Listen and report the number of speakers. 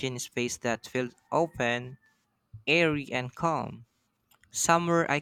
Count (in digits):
1